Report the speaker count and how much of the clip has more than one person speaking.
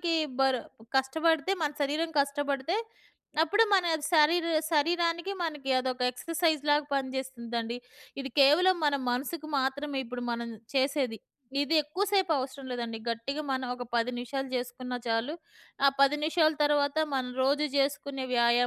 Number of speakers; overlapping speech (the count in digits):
1, no overlap